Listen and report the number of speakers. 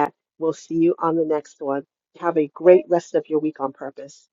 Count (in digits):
1